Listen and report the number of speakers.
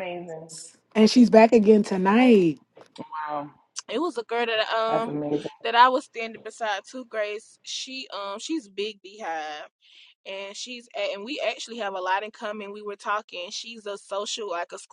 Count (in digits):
3